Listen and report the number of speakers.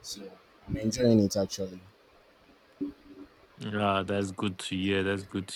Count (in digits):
2